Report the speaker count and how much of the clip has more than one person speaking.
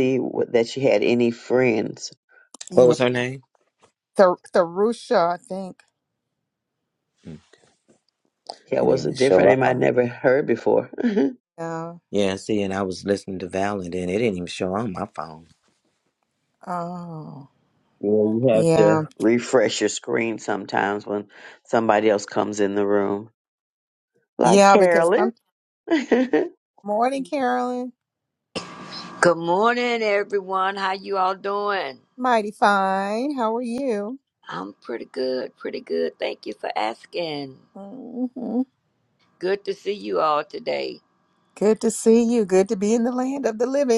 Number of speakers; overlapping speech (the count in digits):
4, about 6%